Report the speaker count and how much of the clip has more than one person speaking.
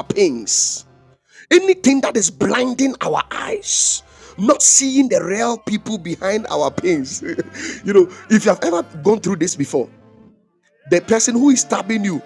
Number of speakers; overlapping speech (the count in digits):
1, no overlap